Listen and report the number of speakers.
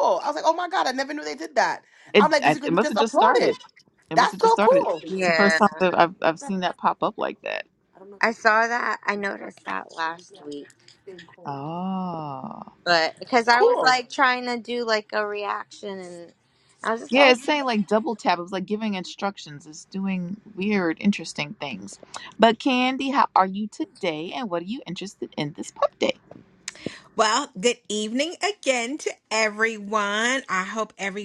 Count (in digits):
4